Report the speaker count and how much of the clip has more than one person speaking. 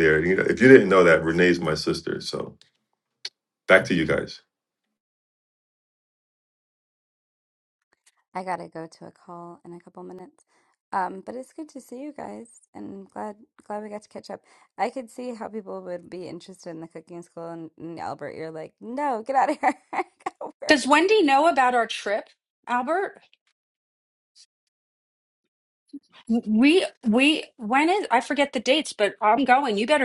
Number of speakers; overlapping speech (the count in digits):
3, about 1%